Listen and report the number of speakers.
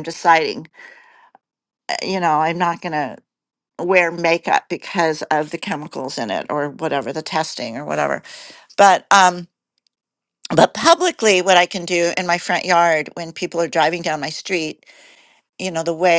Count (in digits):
1